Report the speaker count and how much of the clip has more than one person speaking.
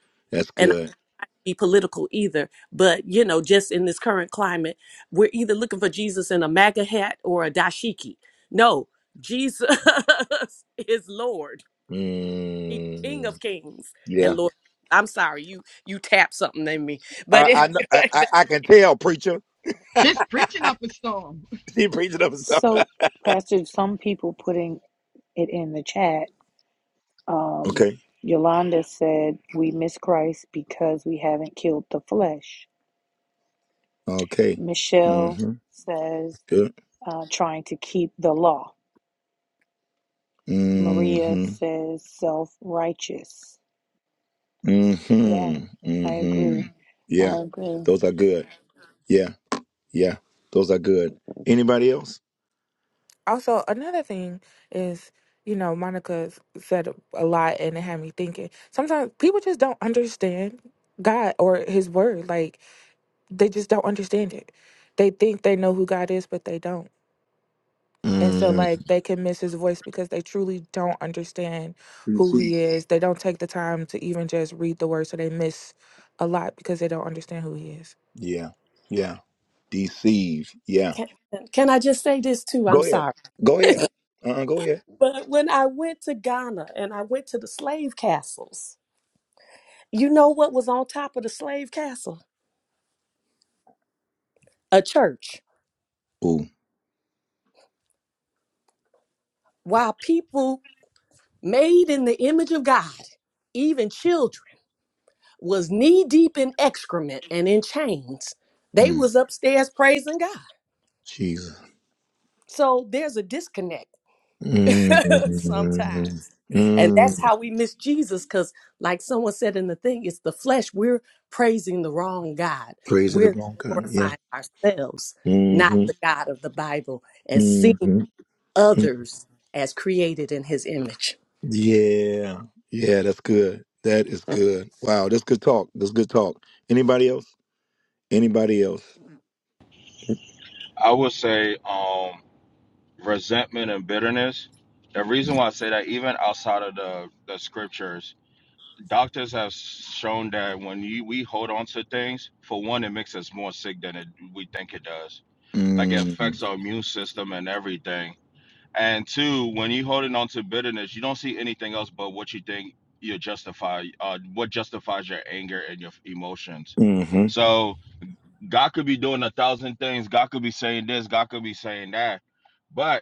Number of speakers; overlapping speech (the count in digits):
6, about 5%